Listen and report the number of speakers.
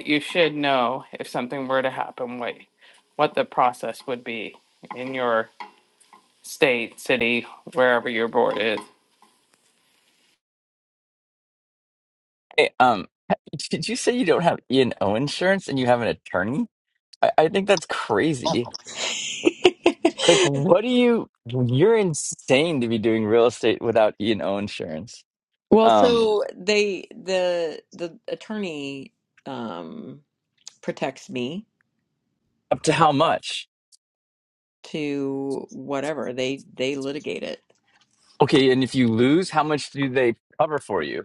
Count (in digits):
3